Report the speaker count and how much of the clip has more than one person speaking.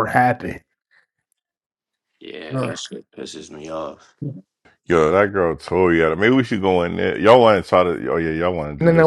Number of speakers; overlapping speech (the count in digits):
3, about 6%